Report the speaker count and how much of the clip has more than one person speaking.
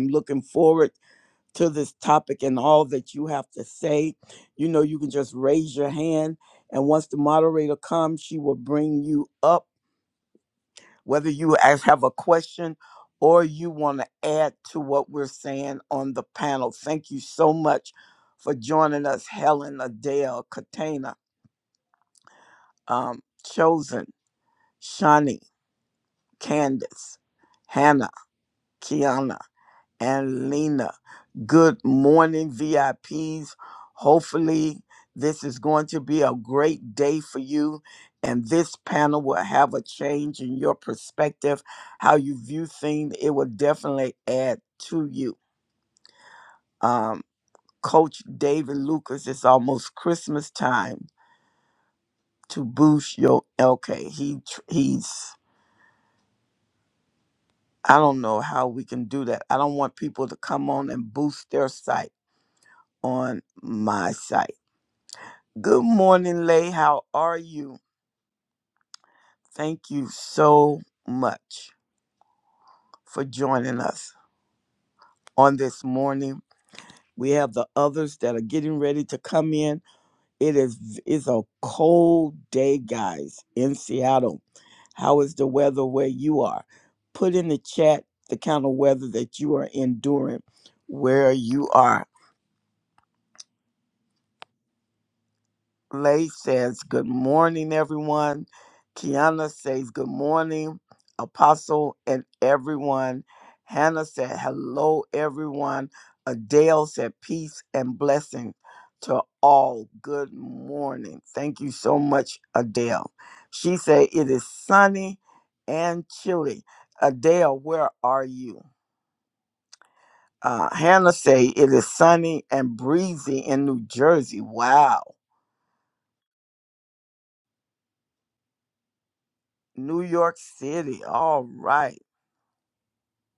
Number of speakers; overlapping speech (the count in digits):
1, no overlap